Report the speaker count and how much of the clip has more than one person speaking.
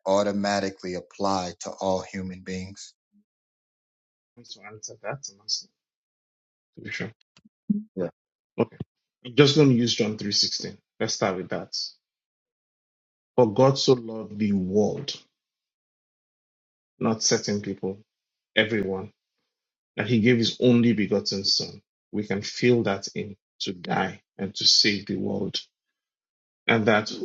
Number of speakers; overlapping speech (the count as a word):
two, no overlap